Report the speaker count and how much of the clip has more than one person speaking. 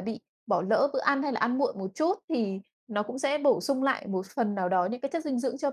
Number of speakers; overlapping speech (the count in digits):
1, no overlap